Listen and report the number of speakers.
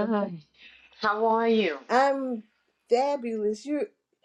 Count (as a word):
two